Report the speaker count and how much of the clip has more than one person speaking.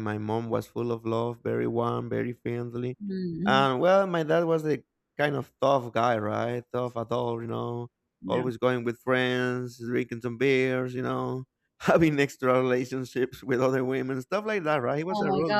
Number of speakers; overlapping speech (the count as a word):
two, about 6%